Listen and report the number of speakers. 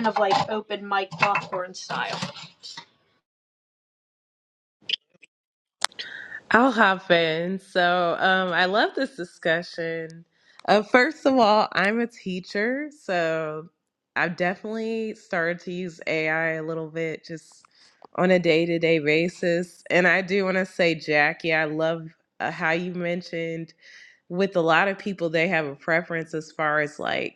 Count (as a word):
two